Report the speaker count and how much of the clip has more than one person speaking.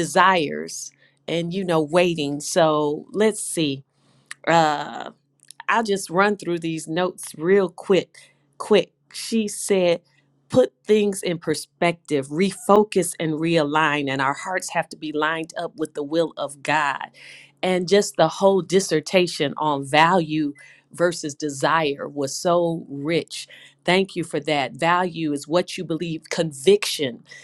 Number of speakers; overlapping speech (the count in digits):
1, no overlap